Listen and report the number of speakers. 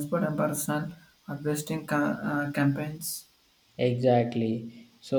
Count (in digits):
2